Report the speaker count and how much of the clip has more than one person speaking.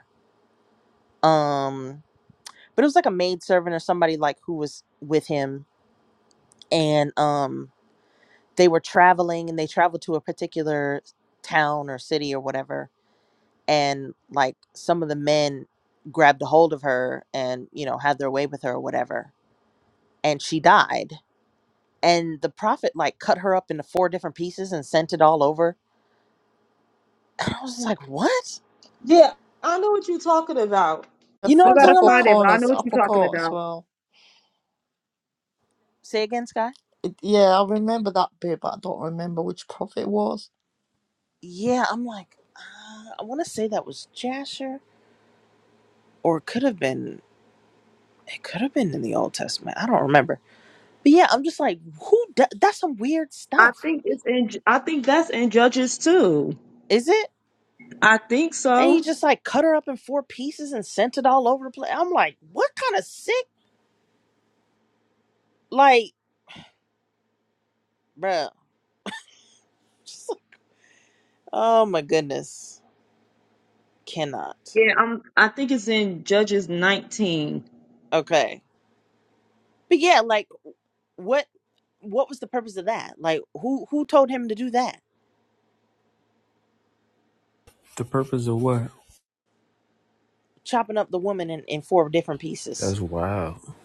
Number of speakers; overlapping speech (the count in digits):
4, about 3%